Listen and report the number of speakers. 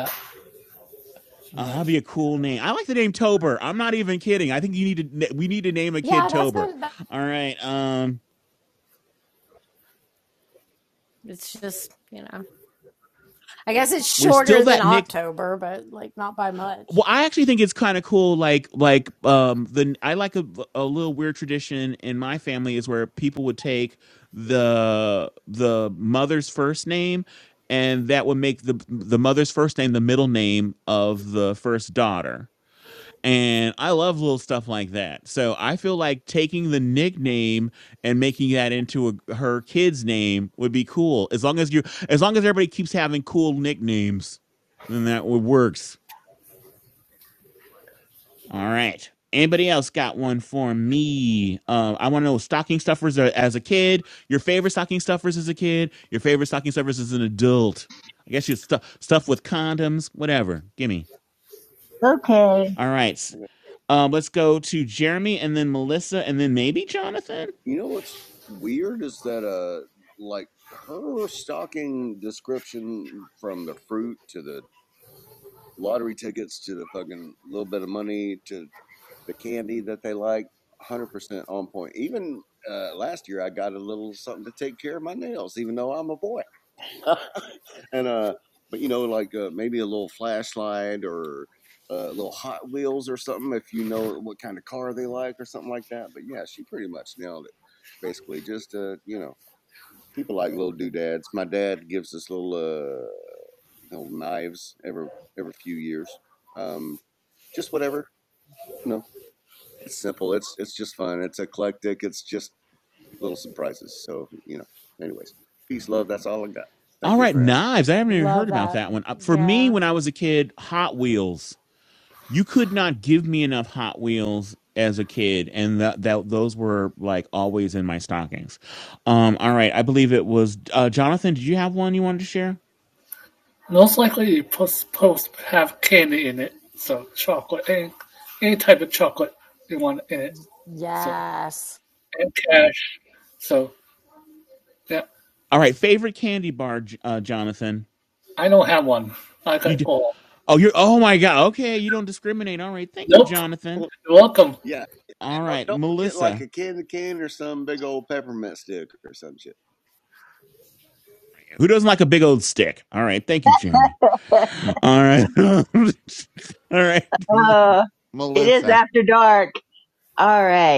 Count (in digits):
5